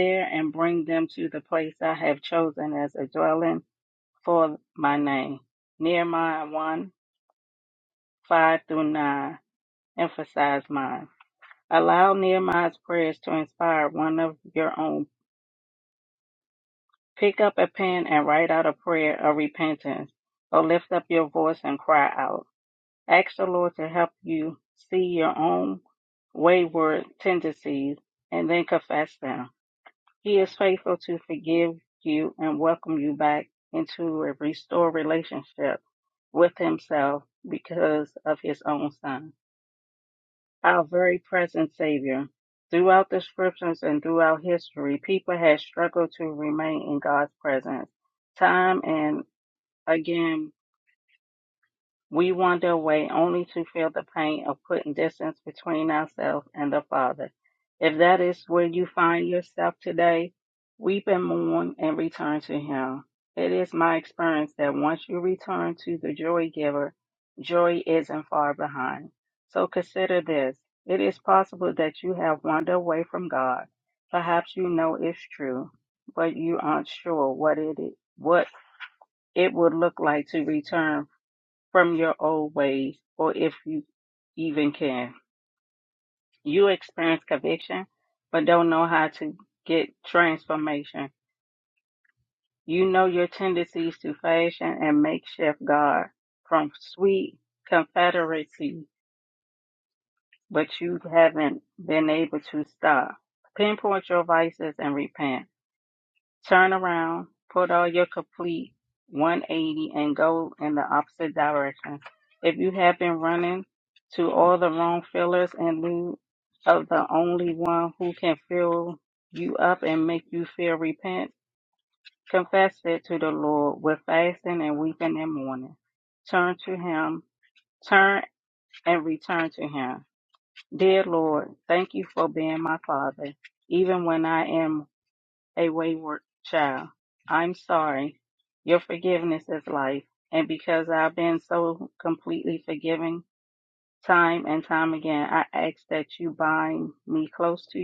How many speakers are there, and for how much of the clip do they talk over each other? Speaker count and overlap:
one, no overlap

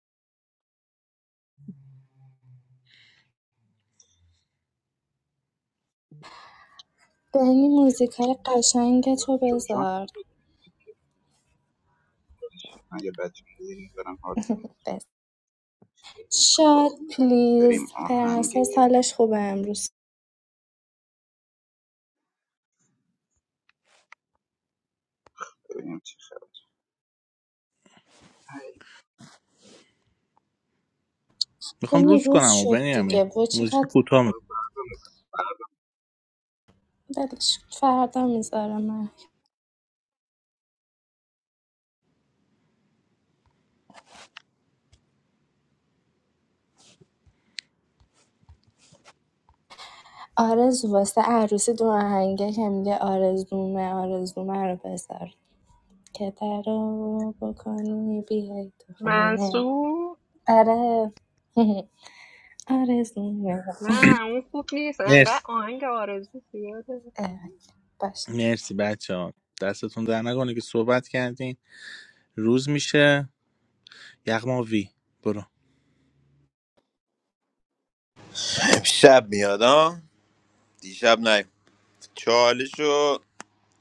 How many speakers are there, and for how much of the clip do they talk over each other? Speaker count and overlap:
five, about 5%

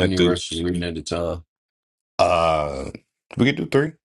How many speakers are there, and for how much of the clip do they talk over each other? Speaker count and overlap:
two, about 9%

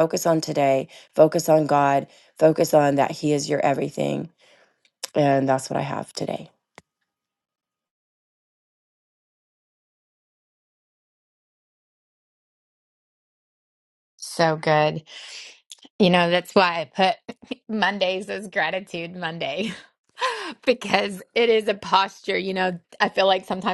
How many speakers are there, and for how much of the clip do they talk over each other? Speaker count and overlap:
two, no overlap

